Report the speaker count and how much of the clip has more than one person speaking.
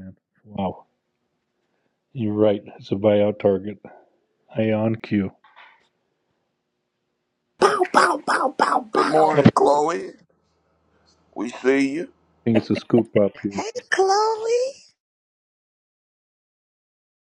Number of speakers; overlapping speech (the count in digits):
4, about 4%